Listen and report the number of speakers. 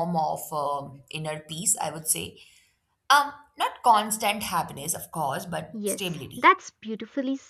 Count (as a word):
two